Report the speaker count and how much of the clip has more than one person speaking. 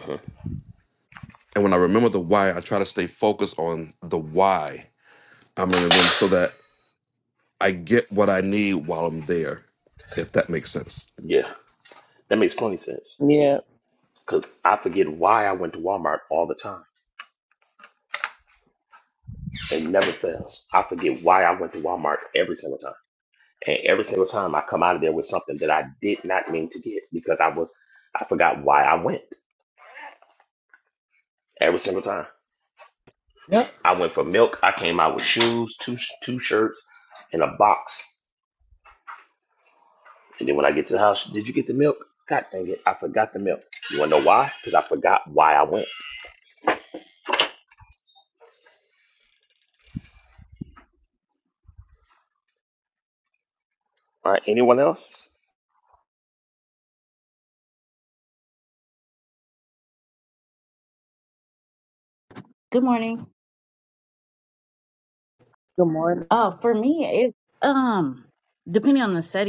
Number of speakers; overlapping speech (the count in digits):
4, no overlap